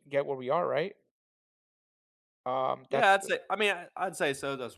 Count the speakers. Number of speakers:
two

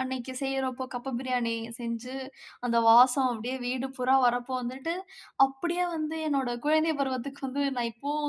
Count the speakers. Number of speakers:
one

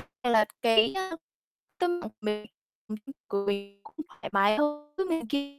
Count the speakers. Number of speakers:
one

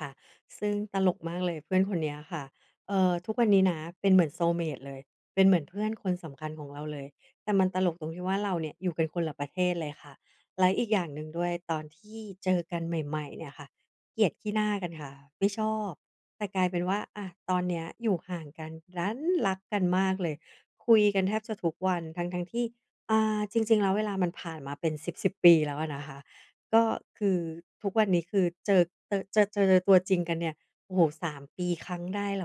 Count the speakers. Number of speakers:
one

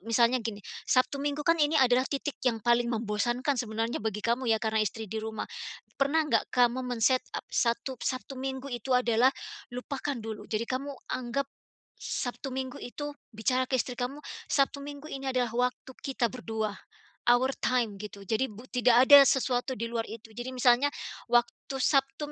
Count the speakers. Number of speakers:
one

